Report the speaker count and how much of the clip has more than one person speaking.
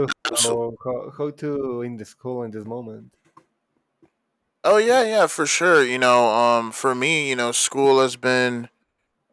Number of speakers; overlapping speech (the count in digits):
2, about 4%